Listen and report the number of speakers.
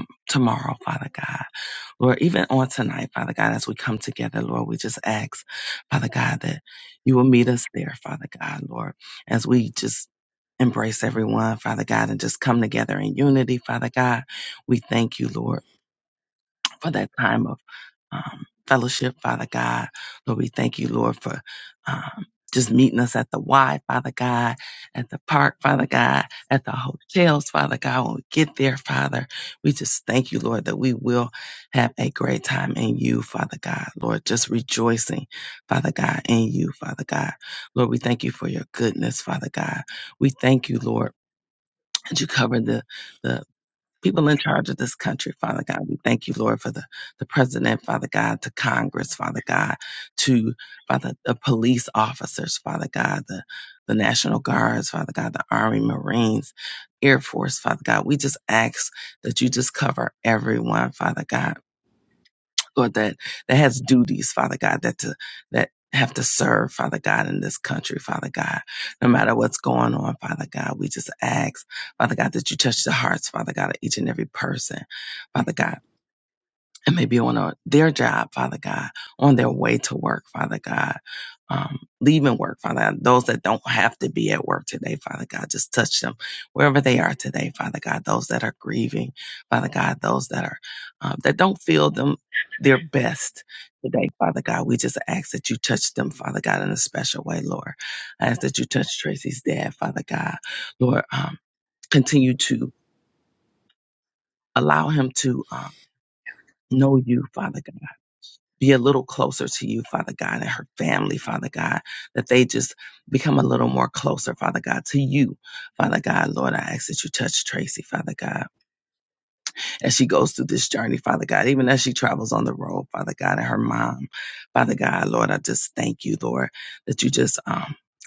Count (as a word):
one